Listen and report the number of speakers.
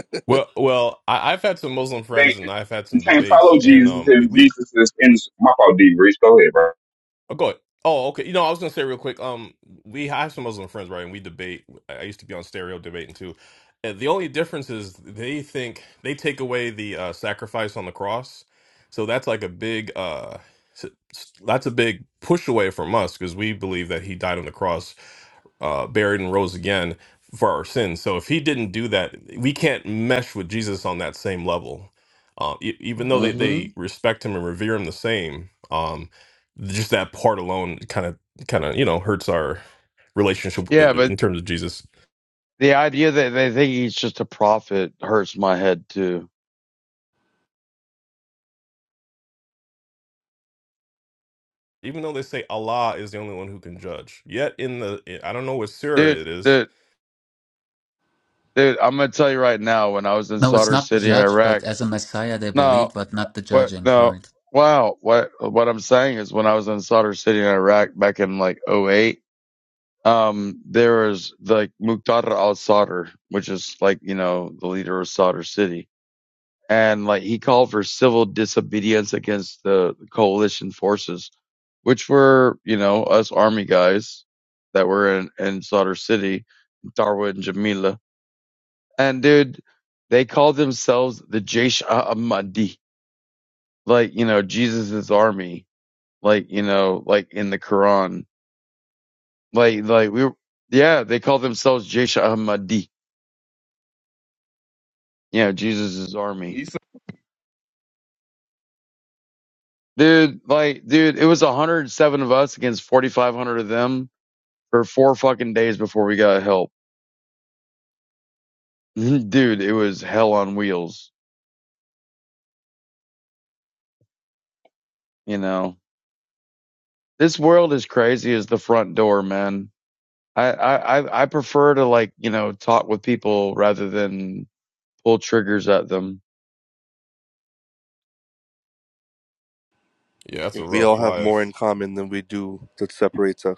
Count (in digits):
5